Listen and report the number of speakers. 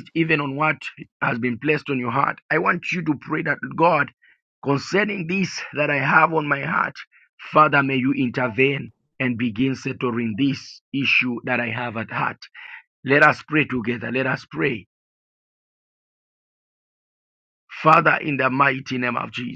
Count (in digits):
1